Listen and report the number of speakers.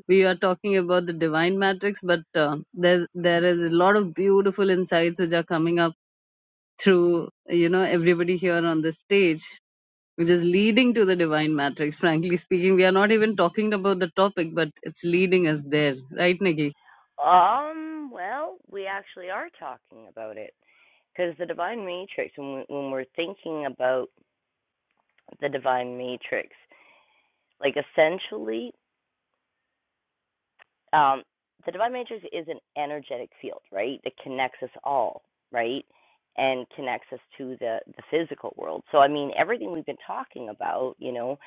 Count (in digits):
2